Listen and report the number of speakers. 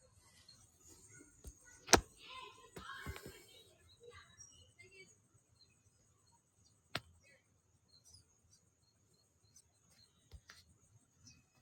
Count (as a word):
zero